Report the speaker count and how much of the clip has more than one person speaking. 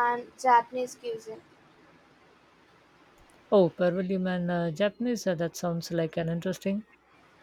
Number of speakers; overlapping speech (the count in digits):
2, no overlap